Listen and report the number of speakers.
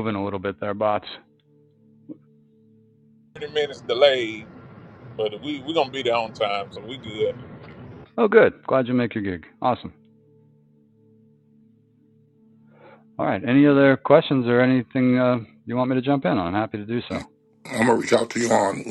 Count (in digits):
3